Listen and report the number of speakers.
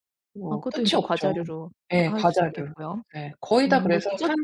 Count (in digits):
2